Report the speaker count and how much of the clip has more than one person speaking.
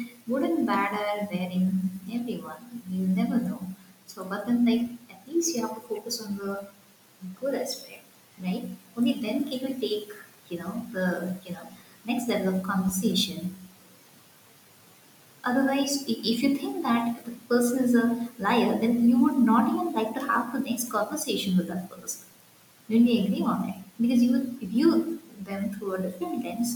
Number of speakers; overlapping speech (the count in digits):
1, no overlap